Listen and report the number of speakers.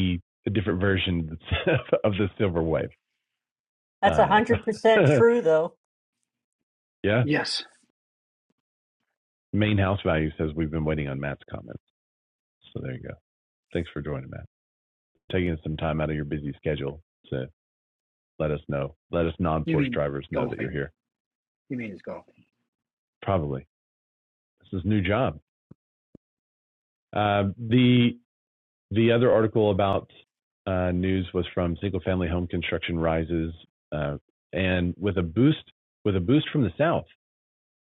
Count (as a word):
three